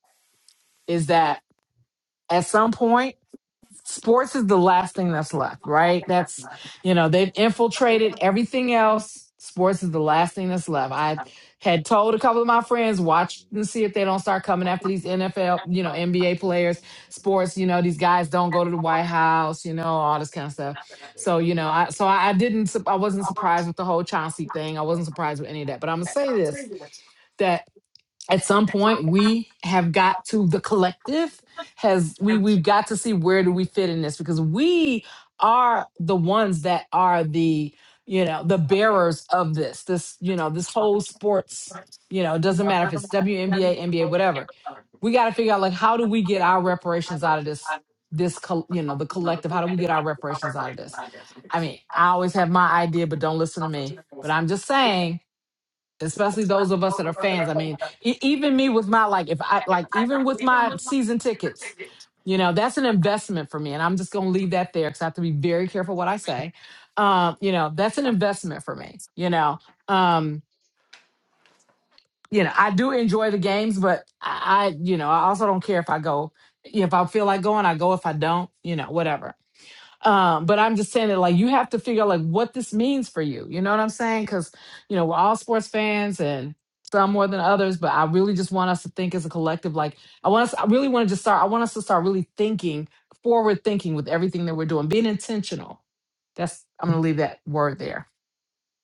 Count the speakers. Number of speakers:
one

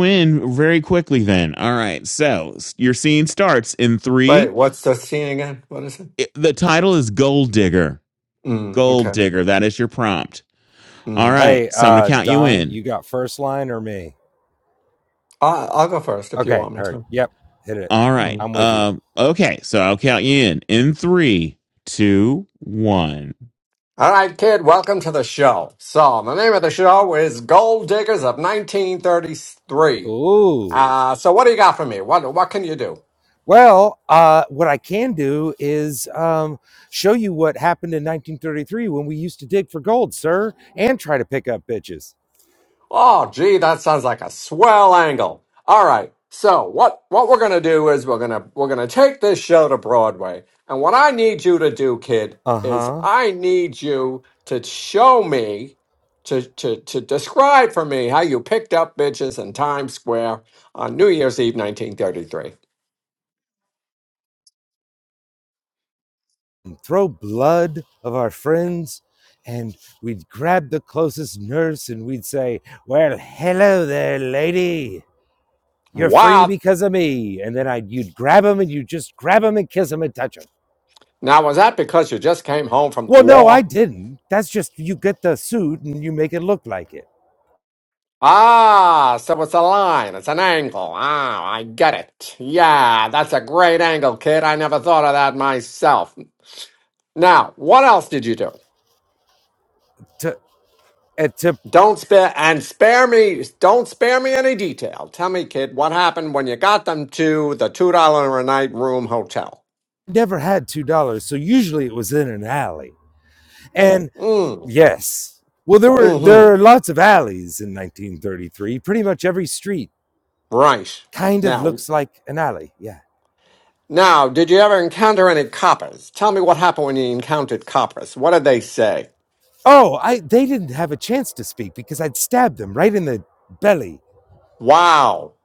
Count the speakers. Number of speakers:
three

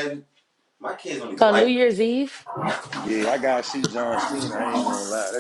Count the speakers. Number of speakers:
three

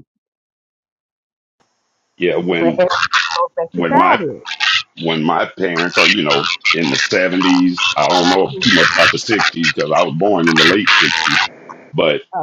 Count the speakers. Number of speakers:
two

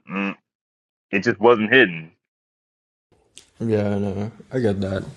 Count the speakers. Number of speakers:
two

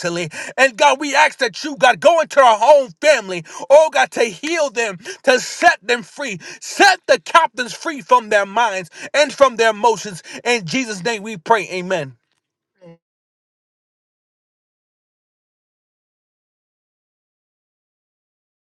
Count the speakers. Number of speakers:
one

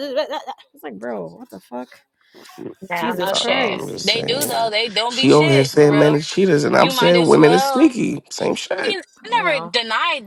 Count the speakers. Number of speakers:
three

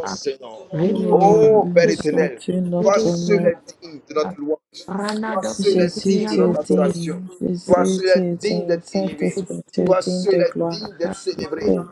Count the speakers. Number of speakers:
three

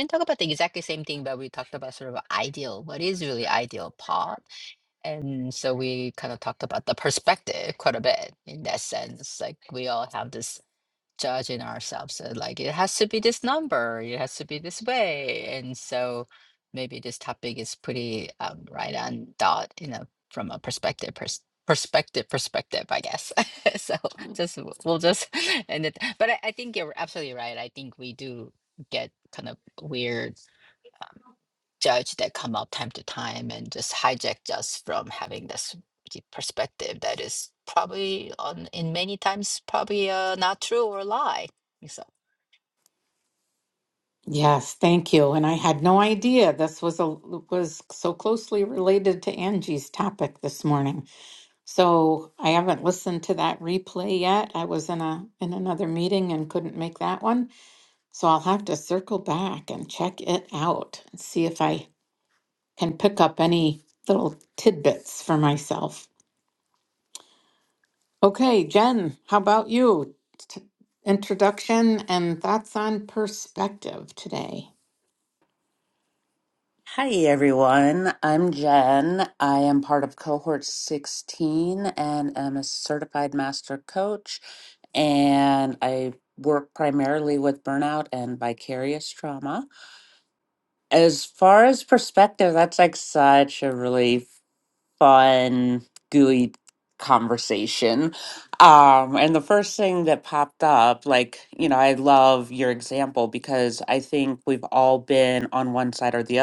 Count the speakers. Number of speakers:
three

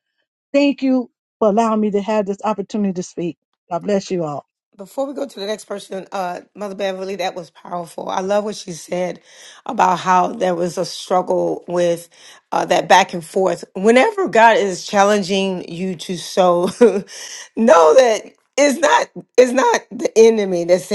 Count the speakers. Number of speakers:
two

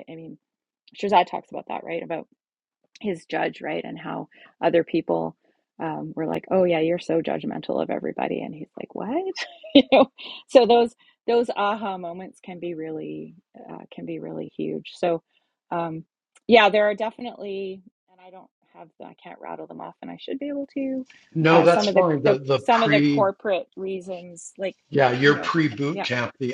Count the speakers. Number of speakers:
two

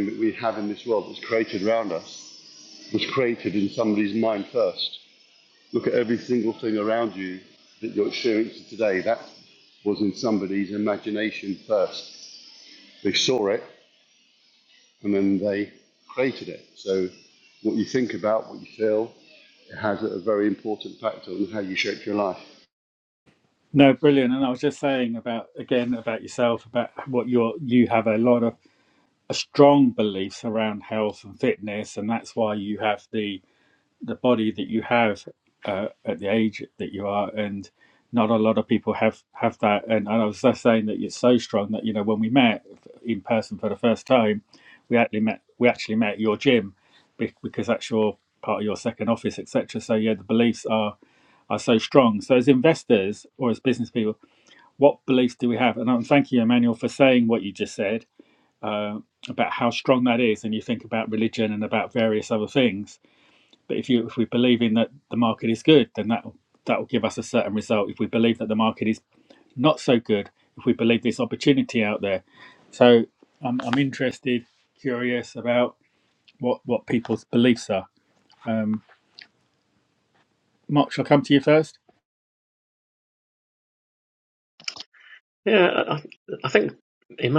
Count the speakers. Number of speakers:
three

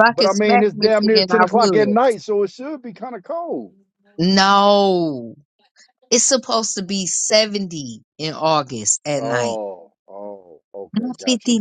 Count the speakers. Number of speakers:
two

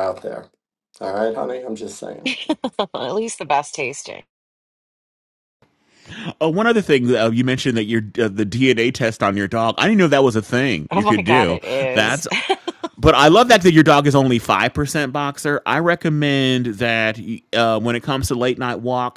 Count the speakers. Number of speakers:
three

